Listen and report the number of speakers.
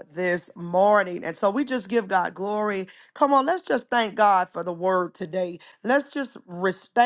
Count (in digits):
1